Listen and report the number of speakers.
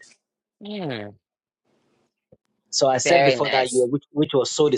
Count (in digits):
2